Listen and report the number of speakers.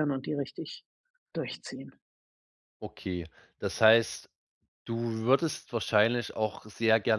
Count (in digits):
2